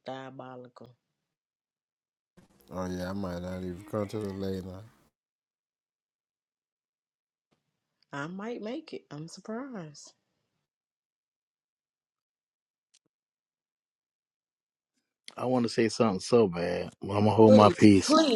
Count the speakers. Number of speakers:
3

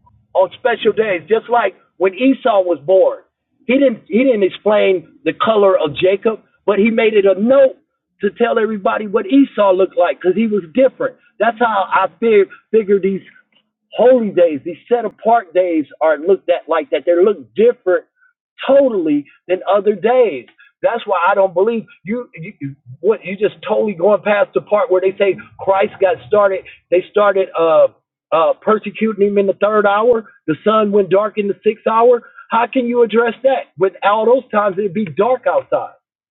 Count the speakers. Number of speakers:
1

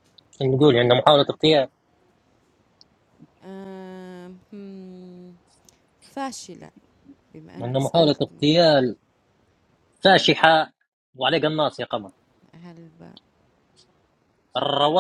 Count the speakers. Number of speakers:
2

